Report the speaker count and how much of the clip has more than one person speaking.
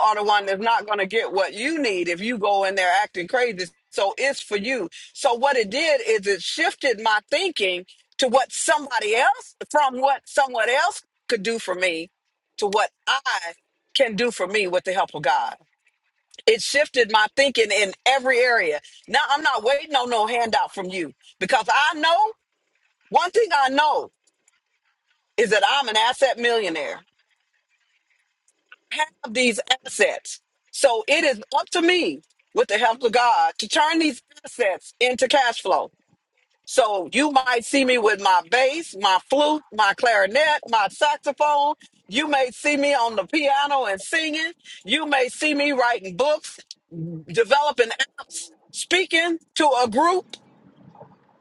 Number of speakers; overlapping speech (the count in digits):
1, no overlap